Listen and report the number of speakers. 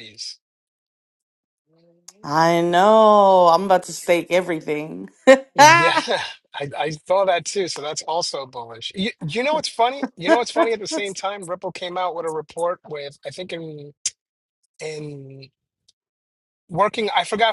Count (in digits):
2